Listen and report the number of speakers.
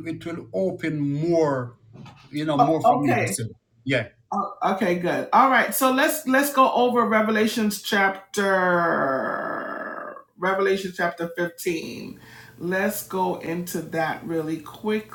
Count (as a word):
two